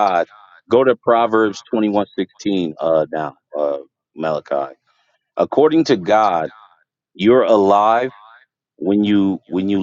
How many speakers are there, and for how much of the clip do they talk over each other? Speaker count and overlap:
one, no overlap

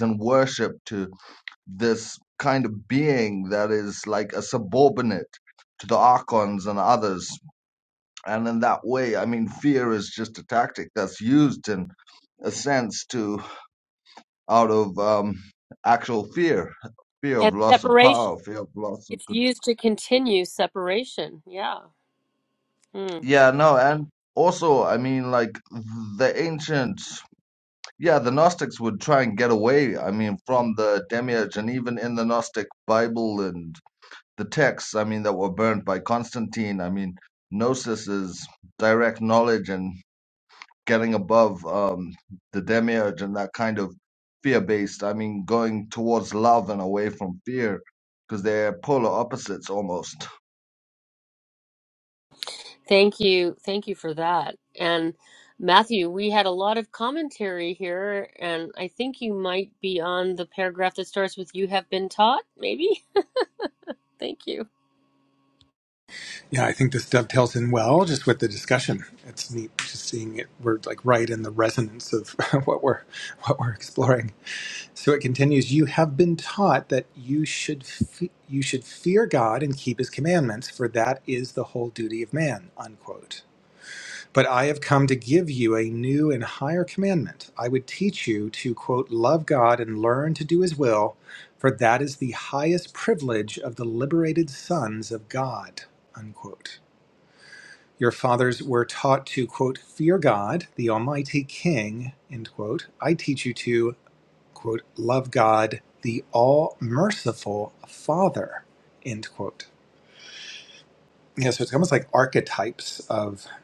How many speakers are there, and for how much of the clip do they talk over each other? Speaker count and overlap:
three, about 1%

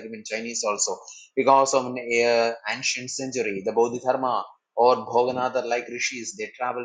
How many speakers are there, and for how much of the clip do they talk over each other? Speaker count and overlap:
one, no overlap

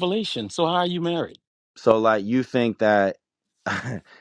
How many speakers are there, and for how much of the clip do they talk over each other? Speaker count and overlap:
two, no overlap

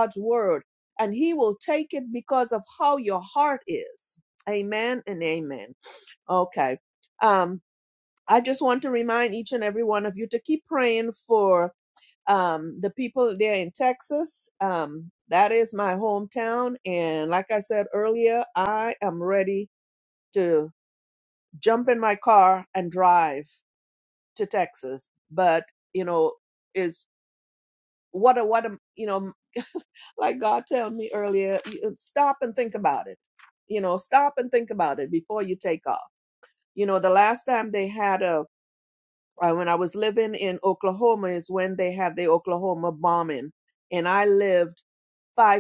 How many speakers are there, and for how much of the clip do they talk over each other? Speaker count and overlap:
one, no overlap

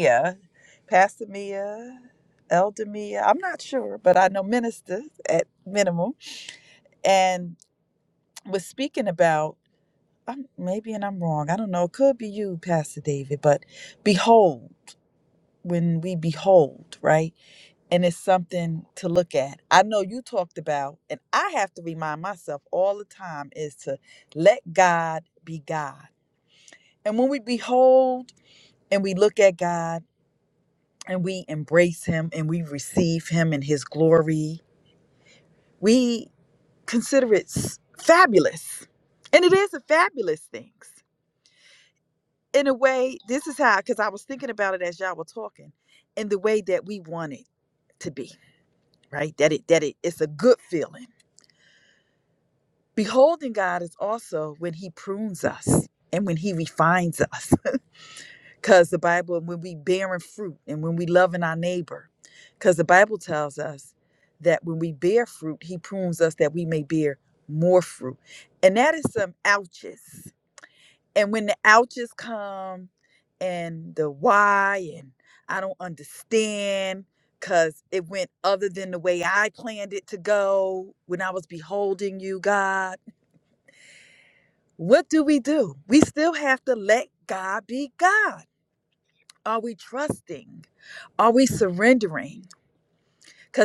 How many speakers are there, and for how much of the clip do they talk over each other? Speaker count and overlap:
one, no overlap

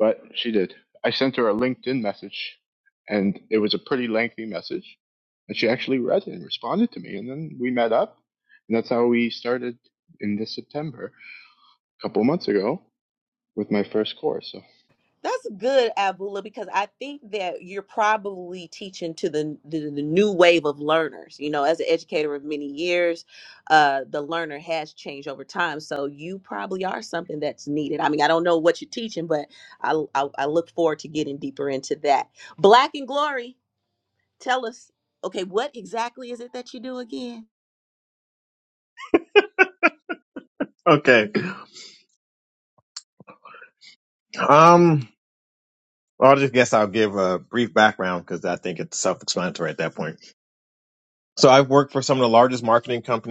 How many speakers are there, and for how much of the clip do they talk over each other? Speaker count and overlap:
three, no overlap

